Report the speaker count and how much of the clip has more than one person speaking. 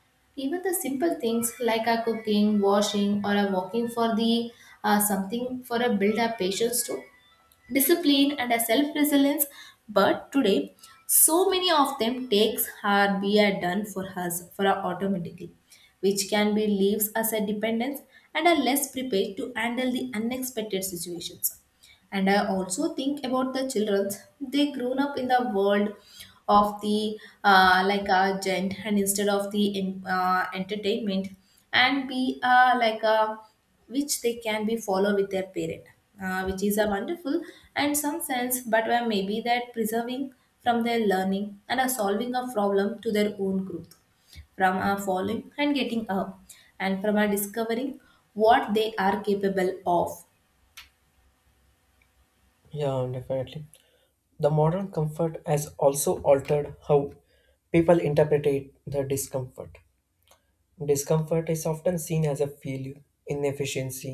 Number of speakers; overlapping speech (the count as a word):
two, no overlap